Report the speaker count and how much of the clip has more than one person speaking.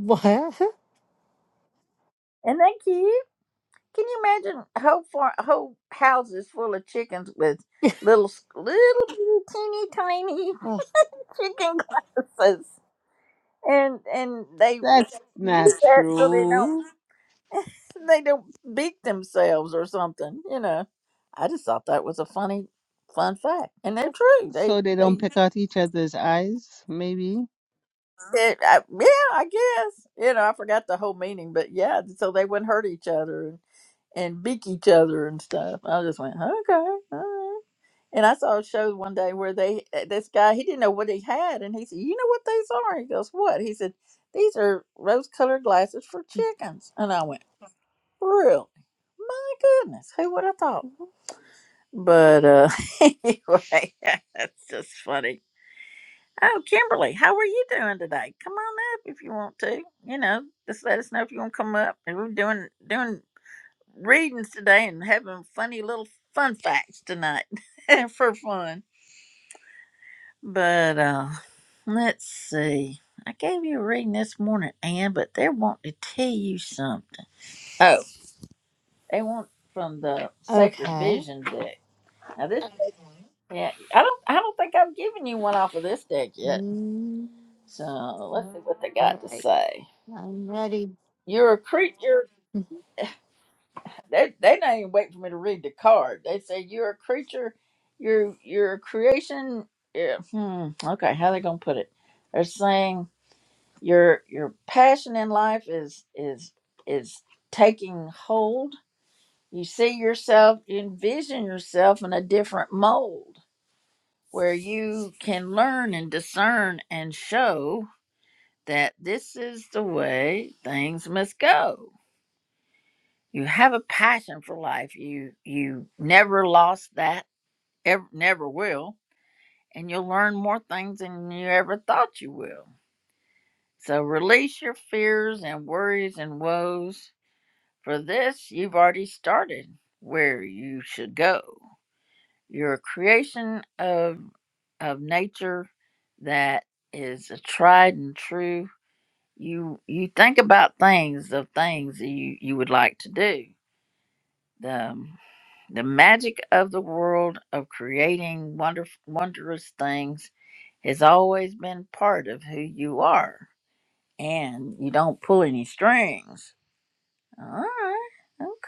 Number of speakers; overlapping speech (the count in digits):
3, about 2%